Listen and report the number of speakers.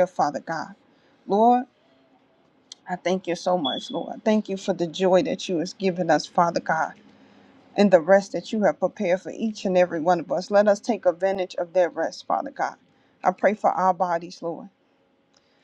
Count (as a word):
one